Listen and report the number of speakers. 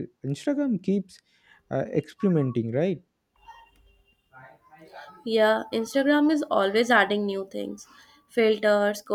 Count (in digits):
2